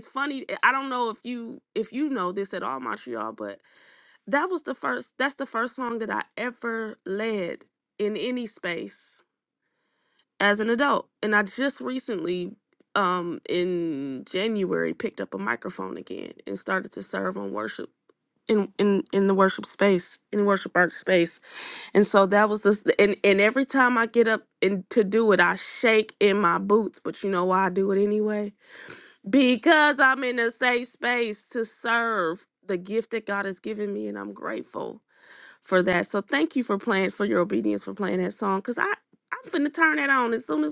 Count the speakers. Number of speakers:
1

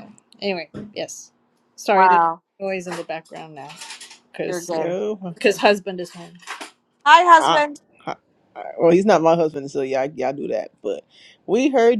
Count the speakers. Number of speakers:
3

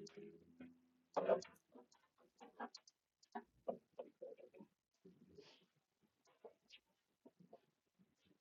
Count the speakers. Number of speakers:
0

